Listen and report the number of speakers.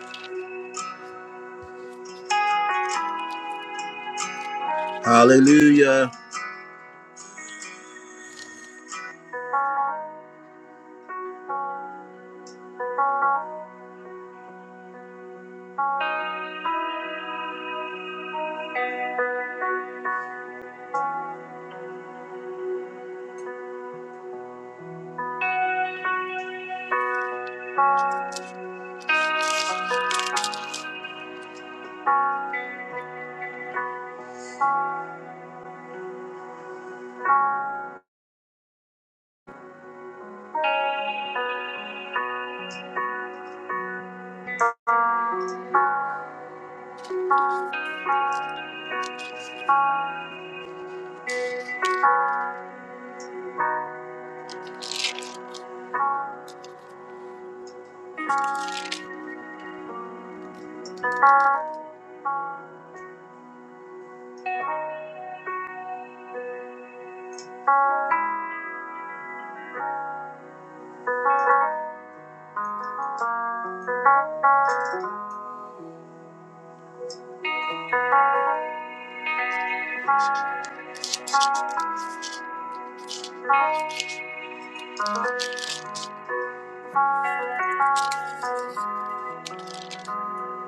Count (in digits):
1